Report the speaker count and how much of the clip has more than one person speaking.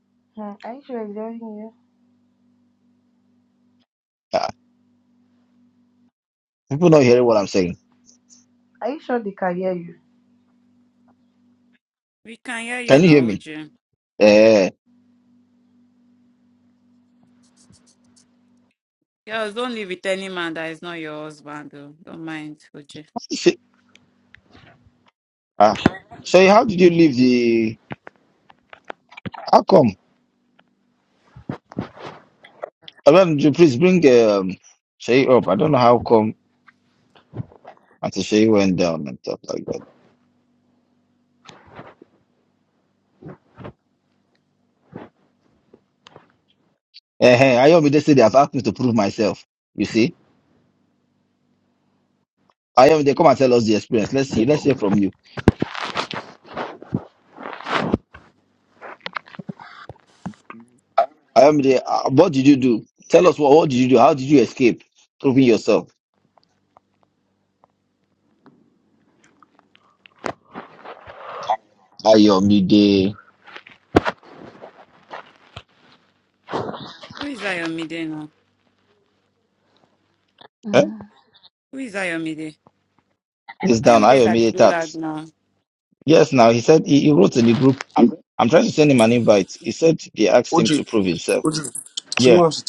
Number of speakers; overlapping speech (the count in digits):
4, about 2%